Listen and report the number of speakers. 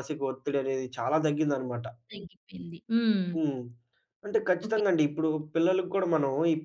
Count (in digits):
2